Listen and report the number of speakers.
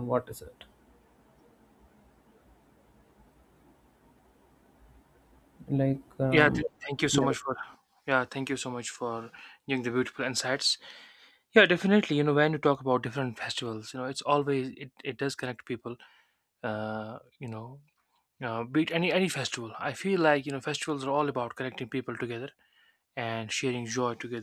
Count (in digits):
2